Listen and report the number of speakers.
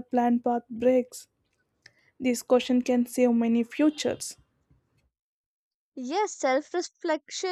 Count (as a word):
two